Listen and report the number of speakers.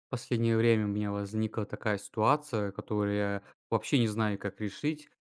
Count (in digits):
1